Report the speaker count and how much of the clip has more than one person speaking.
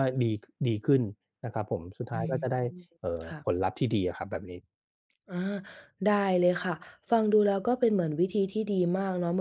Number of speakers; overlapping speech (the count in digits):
2, about 4%